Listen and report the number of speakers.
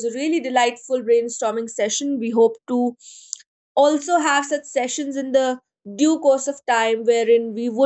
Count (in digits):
1